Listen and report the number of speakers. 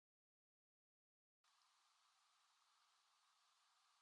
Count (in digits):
0